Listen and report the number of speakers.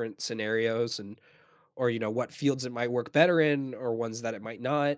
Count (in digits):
1